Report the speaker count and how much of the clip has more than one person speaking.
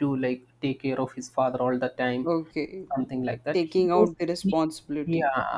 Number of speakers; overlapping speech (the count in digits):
2, about 23%